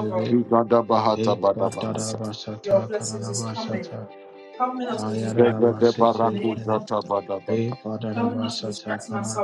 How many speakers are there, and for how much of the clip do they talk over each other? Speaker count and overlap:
three, about 65%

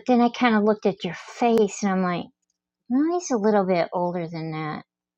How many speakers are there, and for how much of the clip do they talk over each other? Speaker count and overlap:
one, no overlap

